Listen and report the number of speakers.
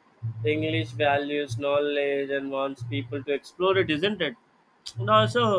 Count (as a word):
one